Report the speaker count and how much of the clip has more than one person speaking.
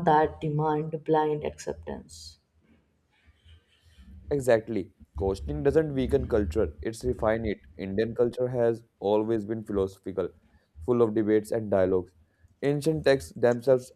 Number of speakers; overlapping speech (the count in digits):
2, no overlap